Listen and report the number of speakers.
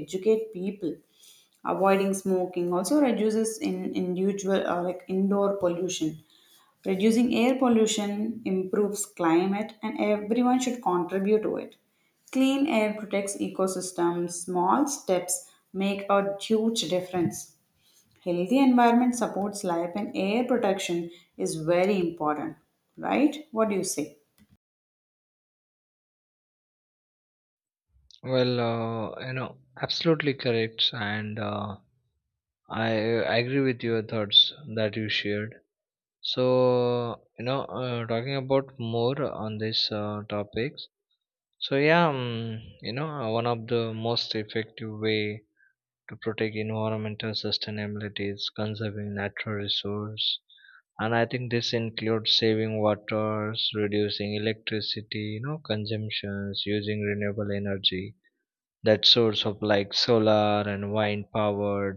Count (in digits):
2